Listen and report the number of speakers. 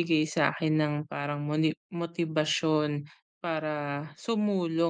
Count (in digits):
1